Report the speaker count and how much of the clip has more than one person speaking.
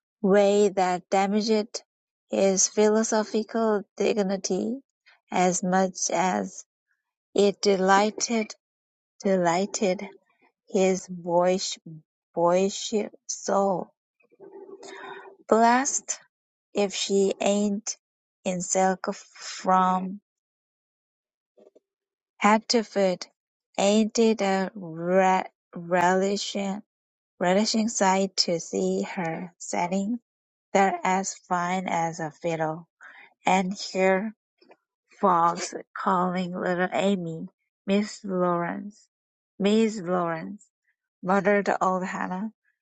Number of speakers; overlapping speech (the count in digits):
1, no overlap